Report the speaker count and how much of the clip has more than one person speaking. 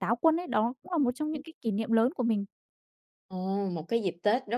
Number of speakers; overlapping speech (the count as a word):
two, about 2%